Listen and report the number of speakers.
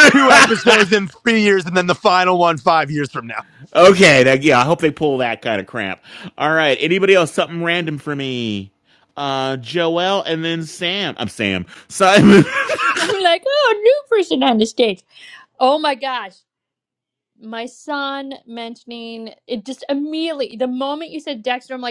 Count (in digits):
3